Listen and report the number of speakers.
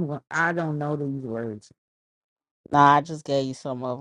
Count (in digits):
2